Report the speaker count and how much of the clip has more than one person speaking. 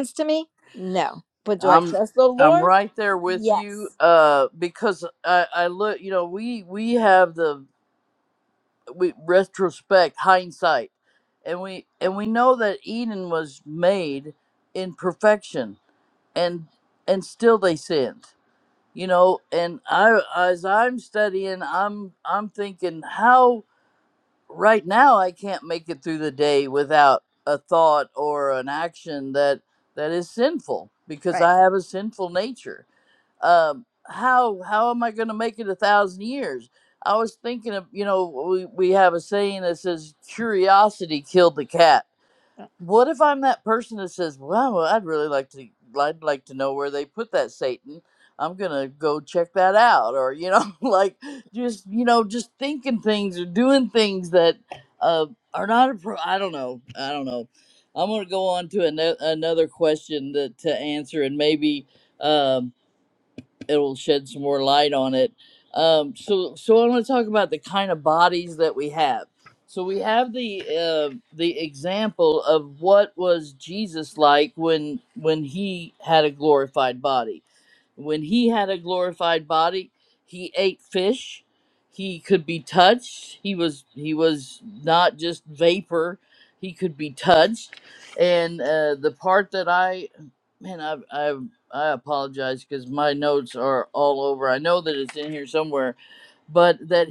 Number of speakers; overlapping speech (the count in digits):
2, about 1%